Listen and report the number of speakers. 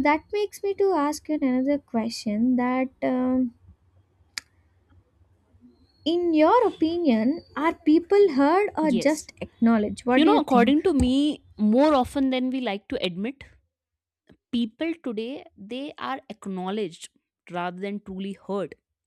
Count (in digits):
2